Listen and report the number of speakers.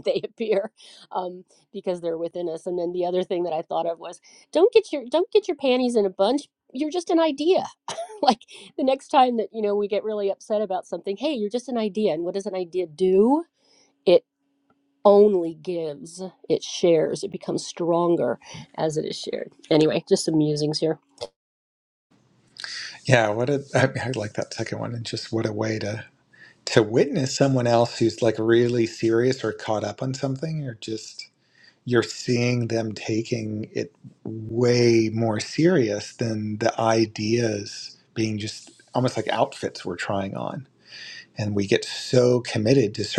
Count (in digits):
2